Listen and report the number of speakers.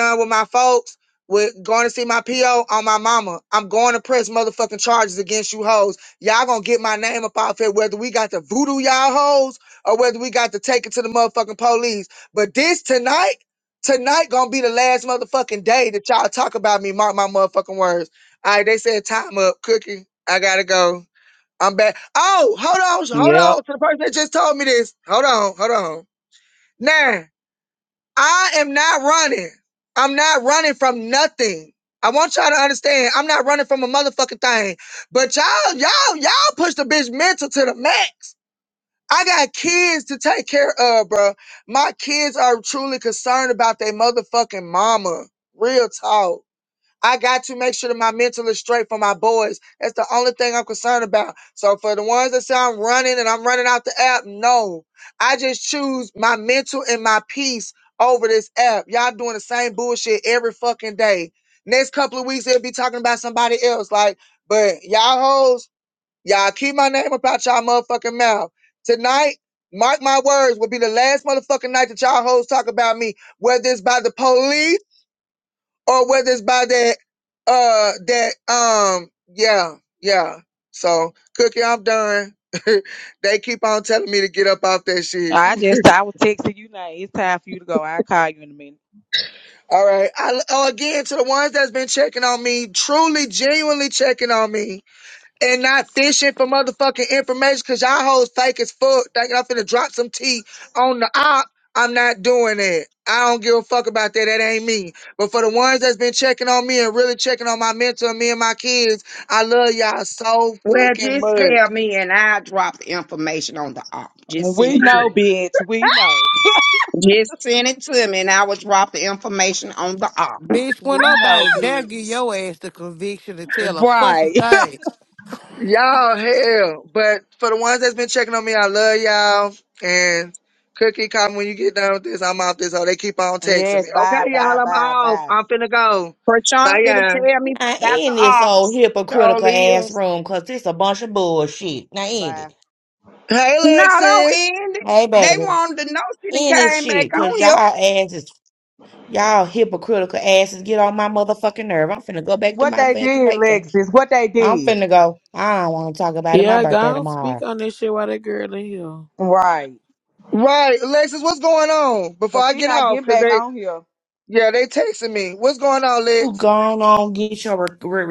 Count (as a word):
six